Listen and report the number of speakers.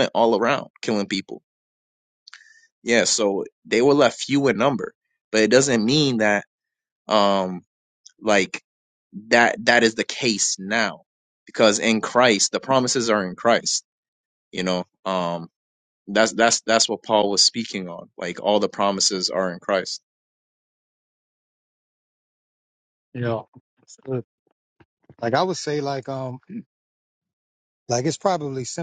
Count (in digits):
2